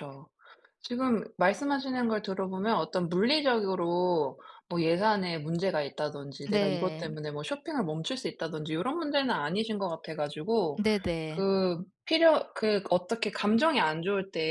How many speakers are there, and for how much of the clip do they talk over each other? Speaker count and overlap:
2, about 6%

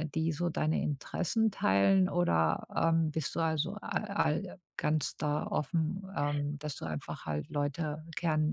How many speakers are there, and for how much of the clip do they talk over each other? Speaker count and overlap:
1, no overlap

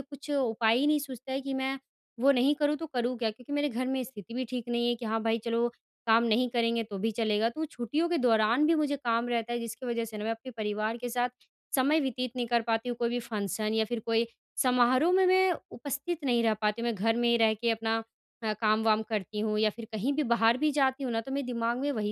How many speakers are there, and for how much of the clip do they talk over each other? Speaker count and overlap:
1, no overlap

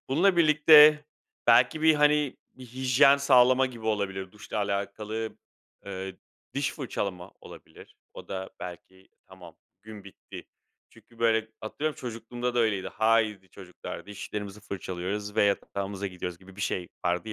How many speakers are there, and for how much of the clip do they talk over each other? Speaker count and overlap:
1, no overlap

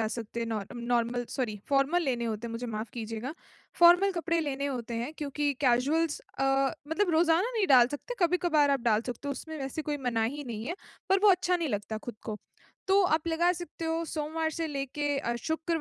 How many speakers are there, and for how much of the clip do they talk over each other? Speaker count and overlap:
1, no overlap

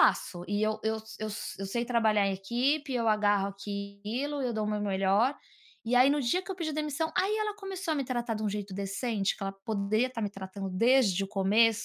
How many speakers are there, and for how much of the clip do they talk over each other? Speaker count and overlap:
1, no overlap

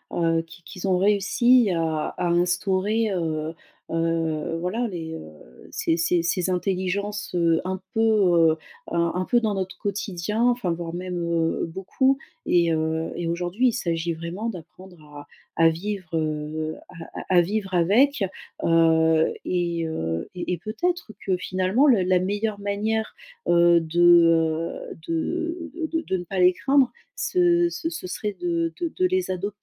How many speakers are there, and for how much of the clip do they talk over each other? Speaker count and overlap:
1, no overlap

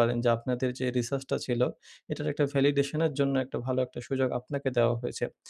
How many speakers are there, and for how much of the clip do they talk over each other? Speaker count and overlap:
1, no overlap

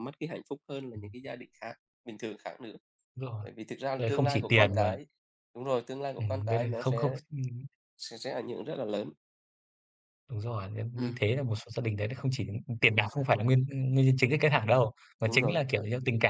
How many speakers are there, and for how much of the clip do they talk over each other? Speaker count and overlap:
2, about 15%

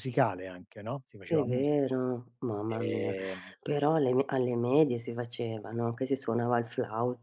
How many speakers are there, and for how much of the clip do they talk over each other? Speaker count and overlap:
2, about 11%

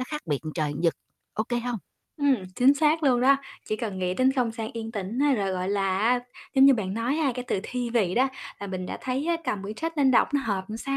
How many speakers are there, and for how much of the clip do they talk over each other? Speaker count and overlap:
2, no overlap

